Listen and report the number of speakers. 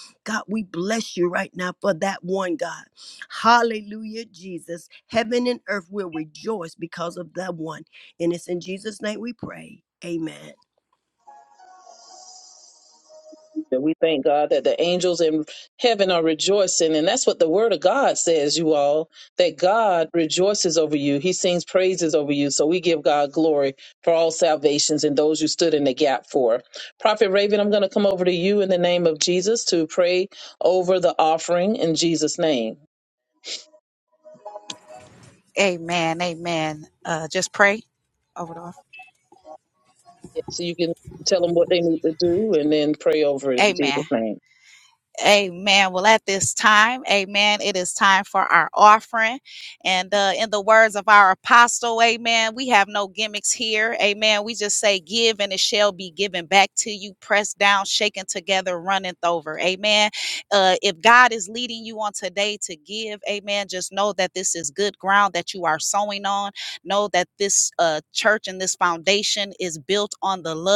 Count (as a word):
three